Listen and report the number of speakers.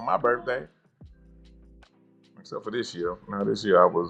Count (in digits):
1